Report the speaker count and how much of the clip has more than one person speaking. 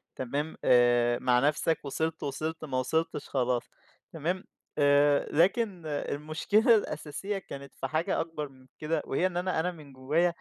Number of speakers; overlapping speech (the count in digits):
1, no overlap